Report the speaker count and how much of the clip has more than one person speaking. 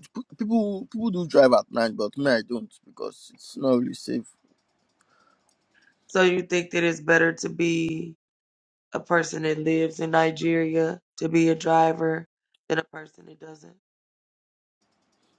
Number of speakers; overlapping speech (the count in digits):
2, no overlap